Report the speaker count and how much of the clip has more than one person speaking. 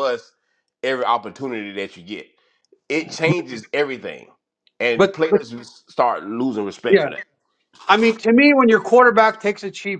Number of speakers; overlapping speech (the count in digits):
2, about 6%